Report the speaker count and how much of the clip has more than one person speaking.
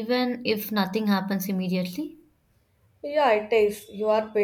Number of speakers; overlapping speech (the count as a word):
two, no overlap